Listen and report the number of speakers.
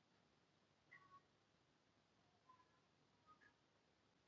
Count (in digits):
0